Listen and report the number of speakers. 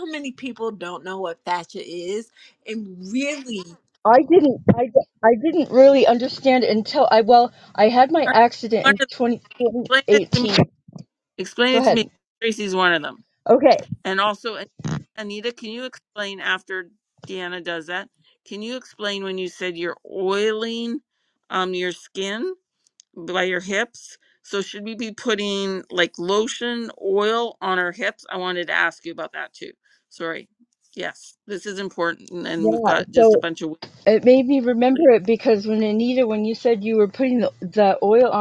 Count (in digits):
3